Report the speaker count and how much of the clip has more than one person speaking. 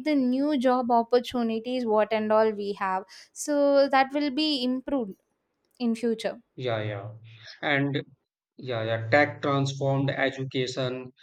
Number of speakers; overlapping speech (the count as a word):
two, no overlap